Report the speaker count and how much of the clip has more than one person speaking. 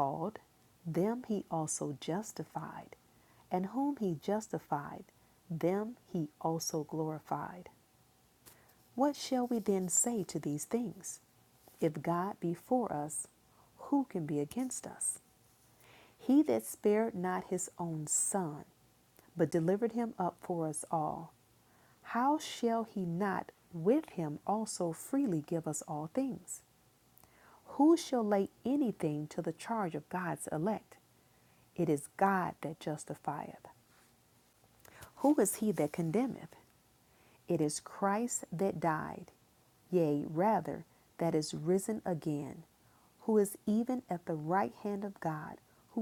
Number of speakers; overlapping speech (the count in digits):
1, no overlap